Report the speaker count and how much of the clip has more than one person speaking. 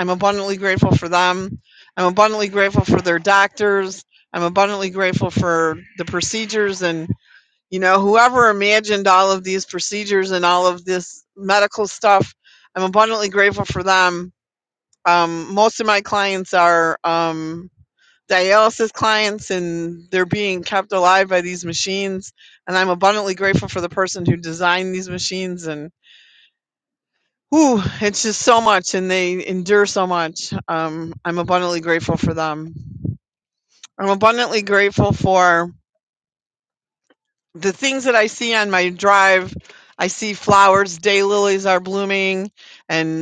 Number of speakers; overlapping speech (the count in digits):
1, no overlap